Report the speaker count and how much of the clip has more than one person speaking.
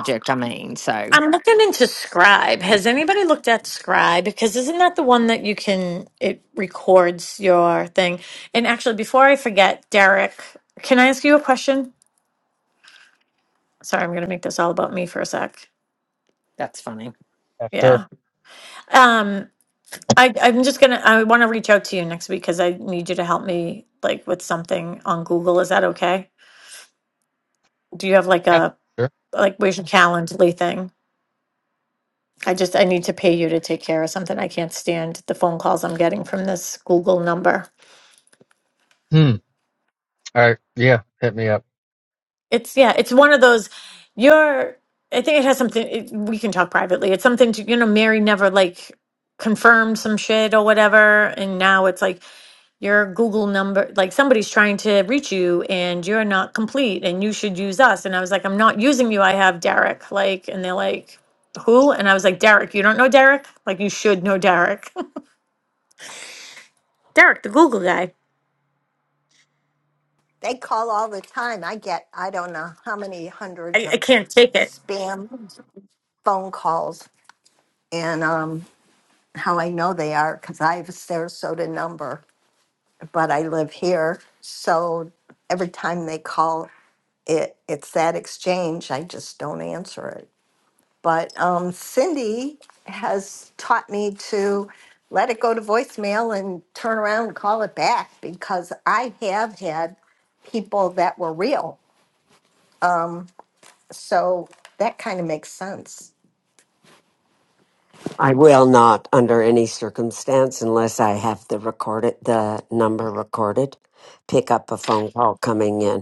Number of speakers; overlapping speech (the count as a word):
five, about 1%